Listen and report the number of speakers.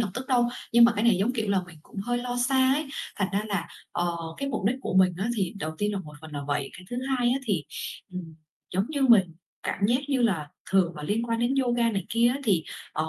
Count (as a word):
one